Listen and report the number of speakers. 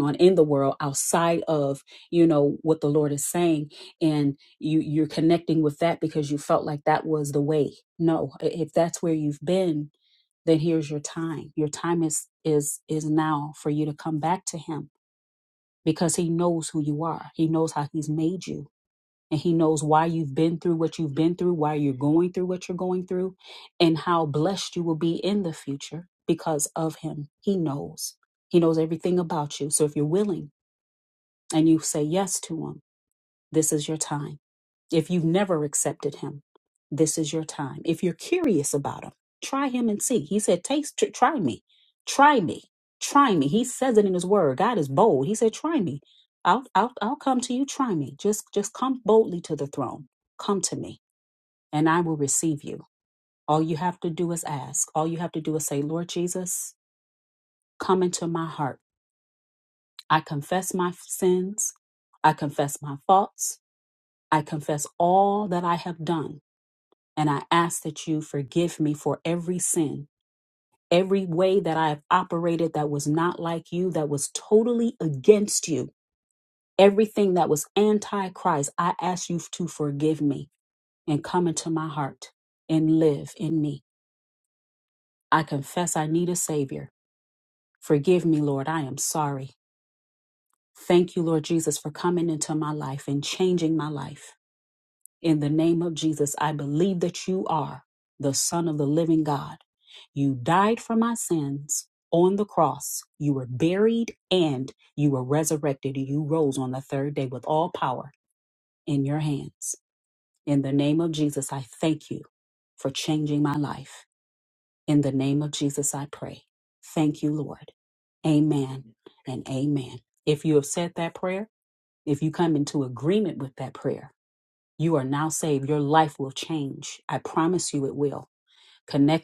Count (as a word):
one